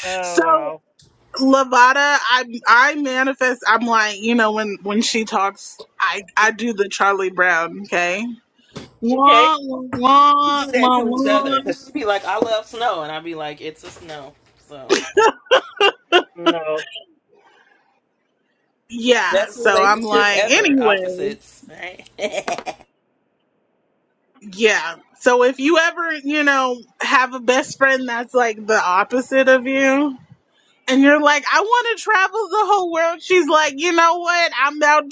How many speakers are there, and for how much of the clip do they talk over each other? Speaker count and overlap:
3, about 11%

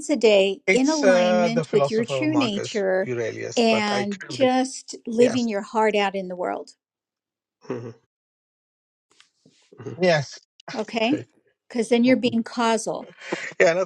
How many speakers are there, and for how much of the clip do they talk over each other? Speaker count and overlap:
3, about 28%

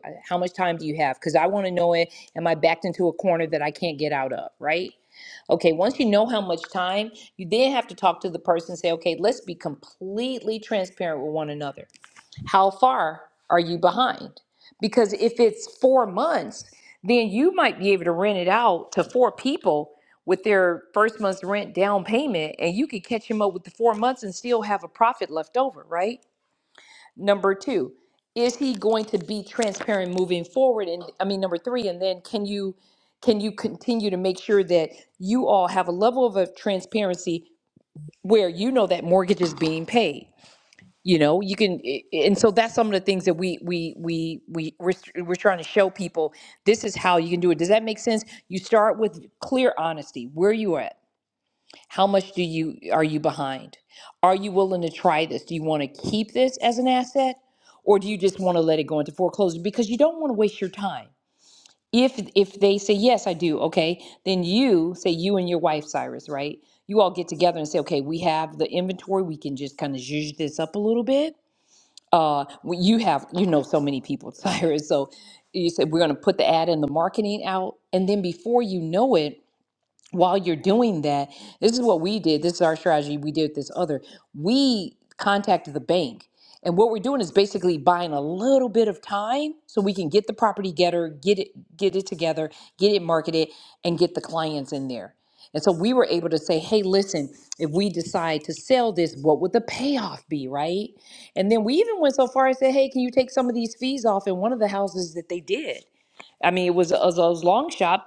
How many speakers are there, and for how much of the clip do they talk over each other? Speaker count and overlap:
1, no overlap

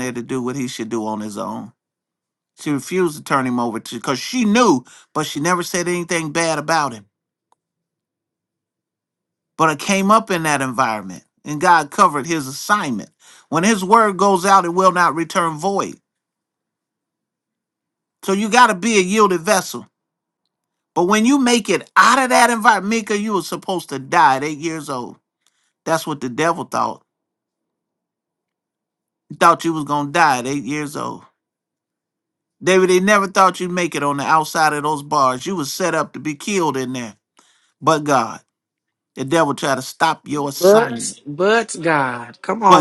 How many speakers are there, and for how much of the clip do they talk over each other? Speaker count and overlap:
2, about 1%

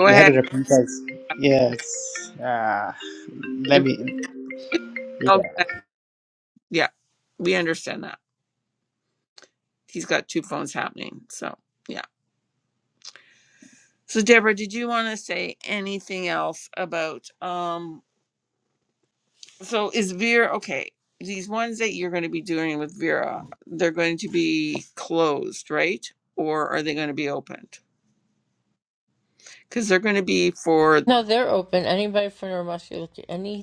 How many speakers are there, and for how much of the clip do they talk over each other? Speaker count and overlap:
3, about 2%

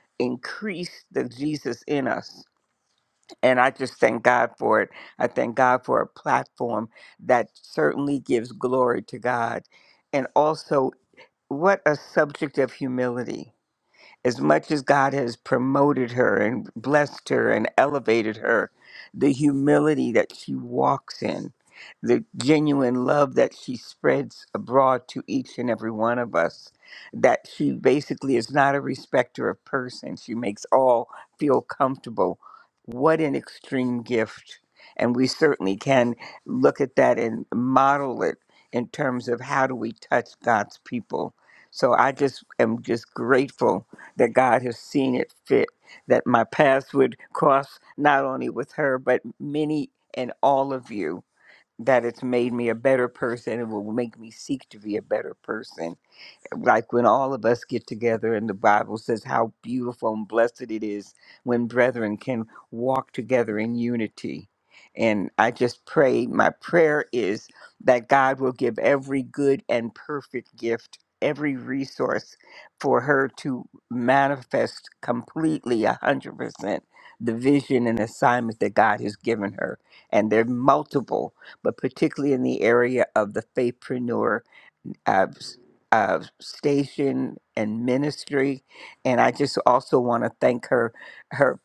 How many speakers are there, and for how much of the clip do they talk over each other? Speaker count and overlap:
1, no overlap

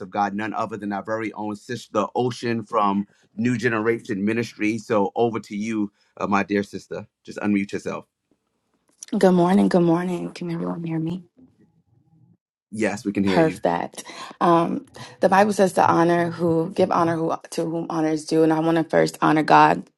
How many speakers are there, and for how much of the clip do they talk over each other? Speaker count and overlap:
2, about 2%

